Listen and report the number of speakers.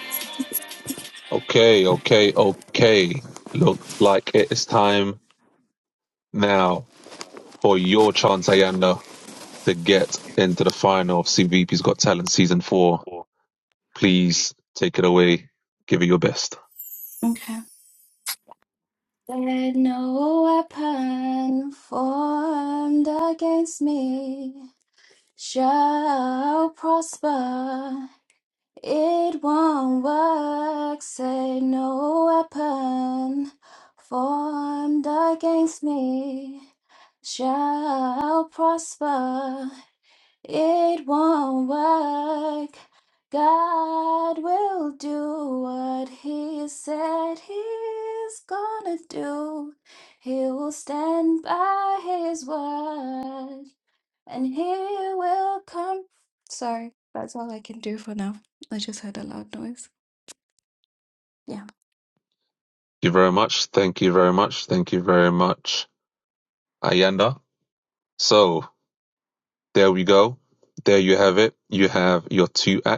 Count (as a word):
two